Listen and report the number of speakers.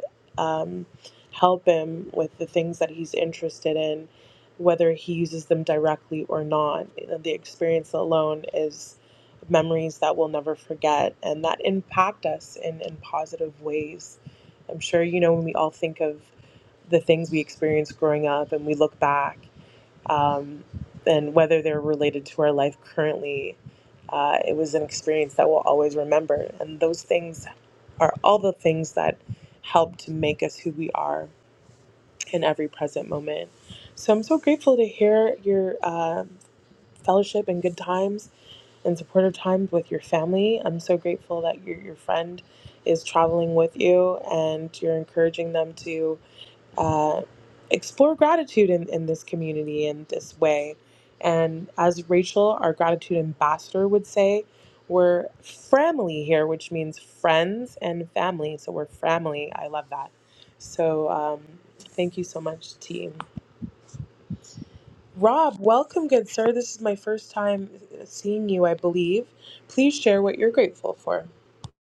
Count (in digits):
1